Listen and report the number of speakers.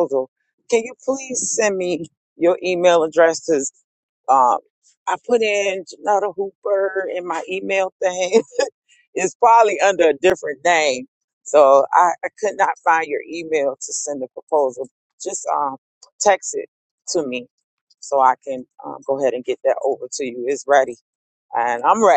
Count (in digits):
1